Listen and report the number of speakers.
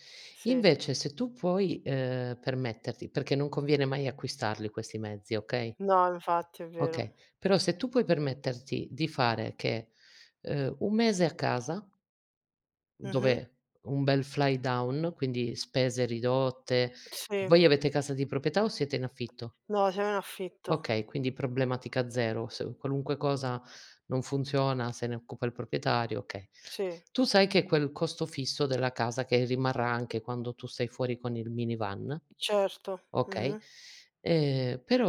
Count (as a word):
two